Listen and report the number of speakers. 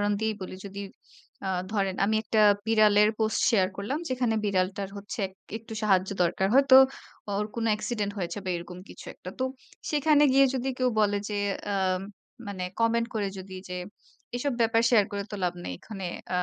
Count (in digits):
1